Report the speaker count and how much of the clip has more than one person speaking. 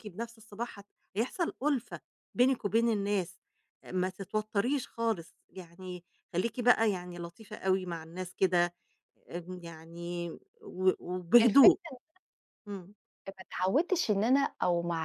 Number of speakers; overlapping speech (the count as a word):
two, about 3%